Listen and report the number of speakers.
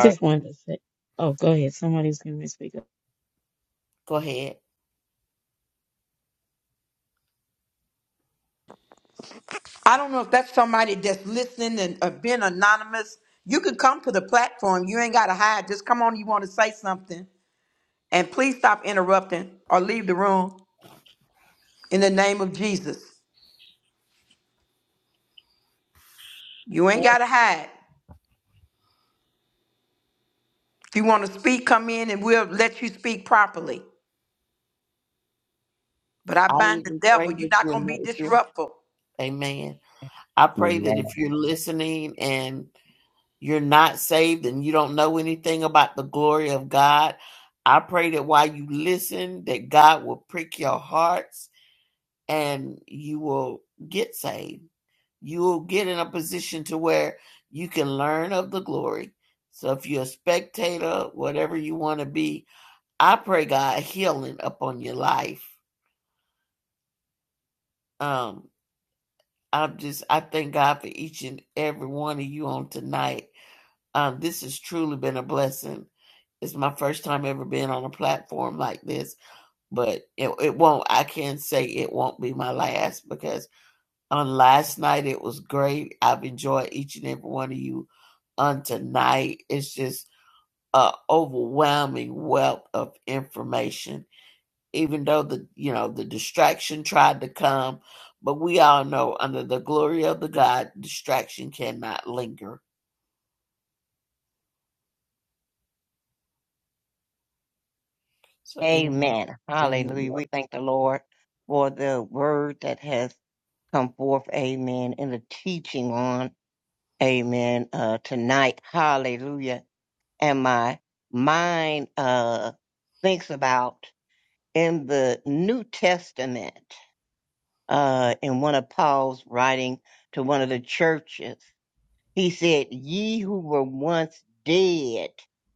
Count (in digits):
4